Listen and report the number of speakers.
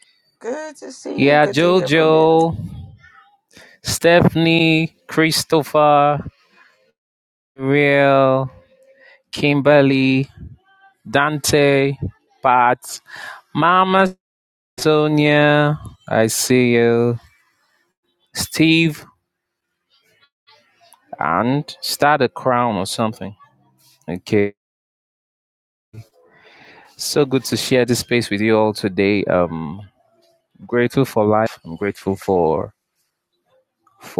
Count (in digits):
2